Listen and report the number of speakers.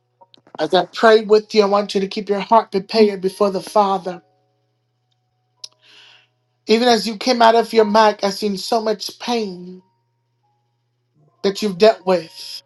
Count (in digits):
1